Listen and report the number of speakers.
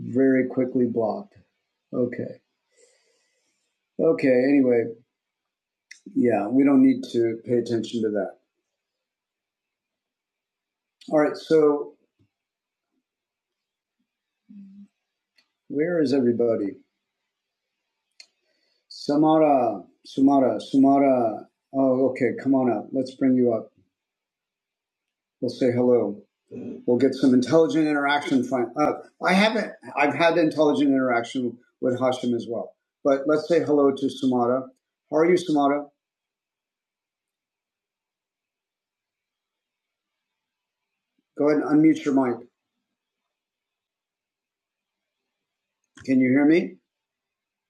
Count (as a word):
one